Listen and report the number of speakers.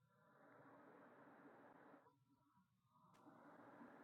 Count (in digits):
0